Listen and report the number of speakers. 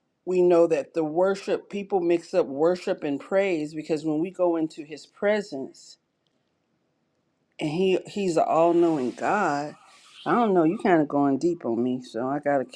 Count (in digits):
1